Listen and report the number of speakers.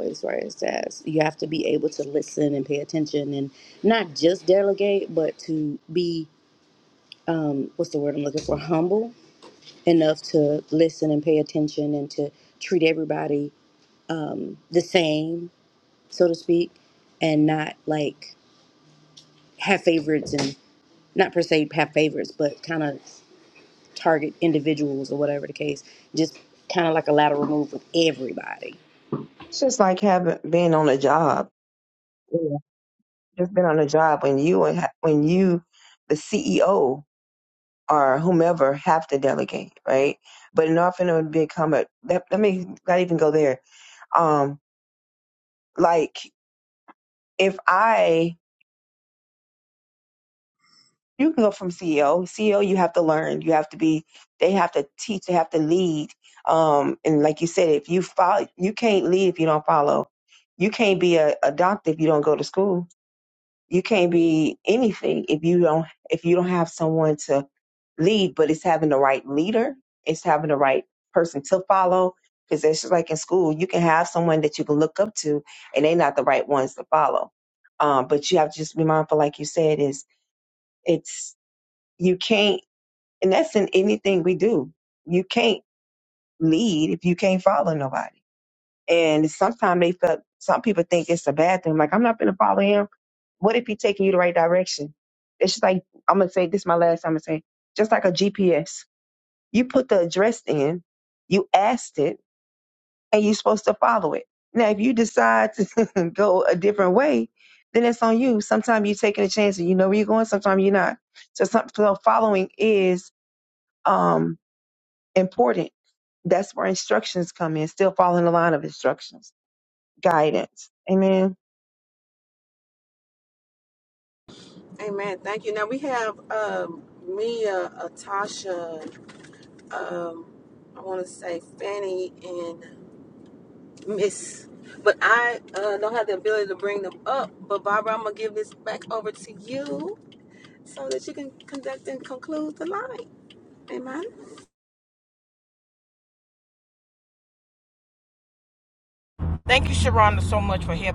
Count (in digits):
4